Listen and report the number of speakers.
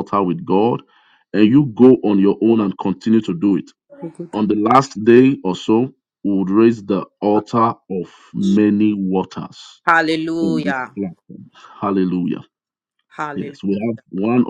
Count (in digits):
2